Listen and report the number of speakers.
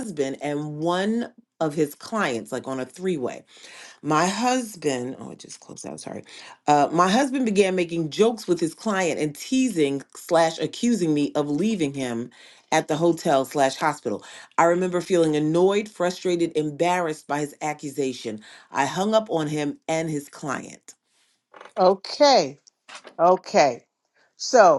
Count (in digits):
2